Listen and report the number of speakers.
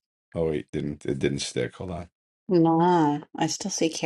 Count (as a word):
two